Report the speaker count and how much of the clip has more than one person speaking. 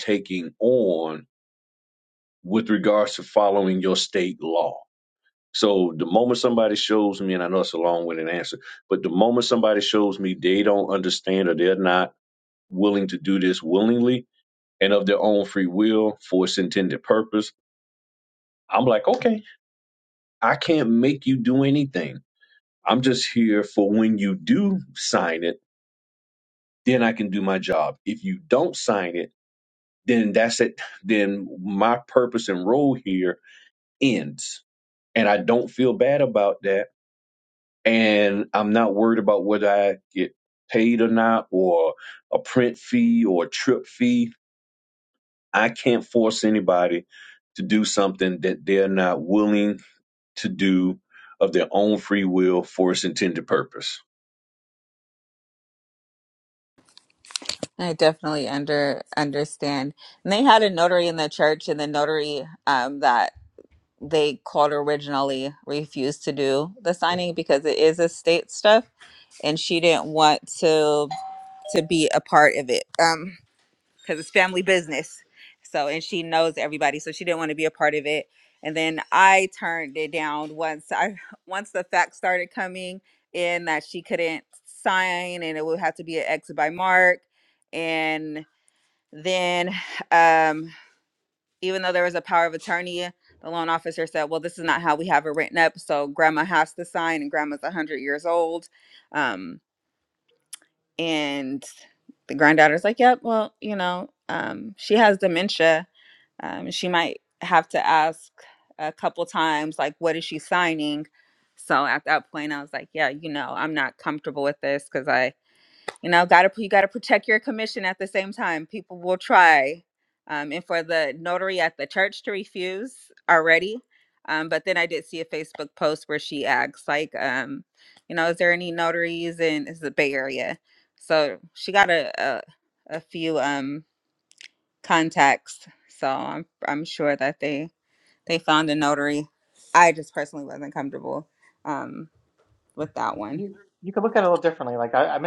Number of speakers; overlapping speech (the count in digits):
3, under 1%